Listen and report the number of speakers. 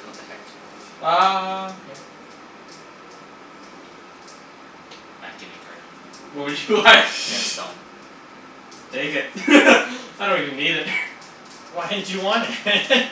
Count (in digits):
3